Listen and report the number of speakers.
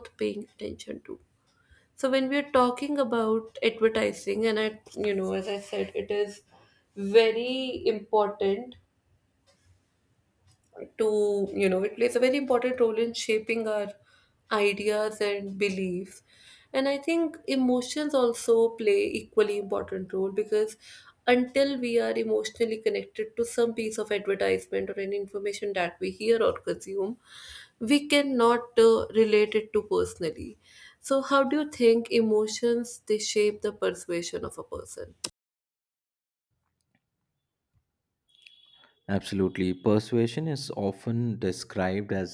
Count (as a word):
two